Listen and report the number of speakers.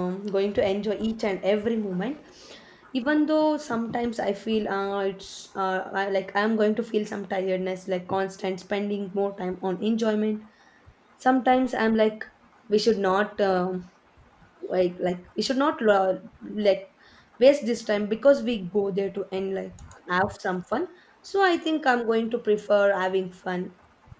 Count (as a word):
one